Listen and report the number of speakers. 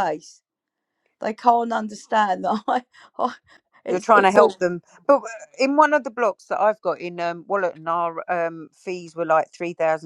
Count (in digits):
2